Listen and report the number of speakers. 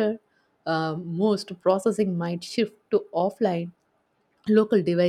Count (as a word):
one